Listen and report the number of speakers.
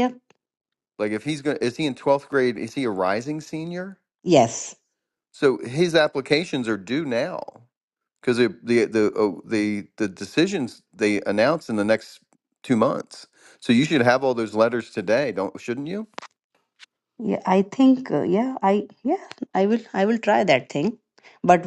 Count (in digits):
2